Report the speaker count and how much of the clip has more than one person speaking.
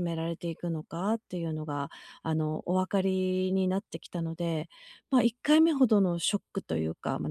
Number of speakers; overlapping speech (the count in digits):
1, no overlap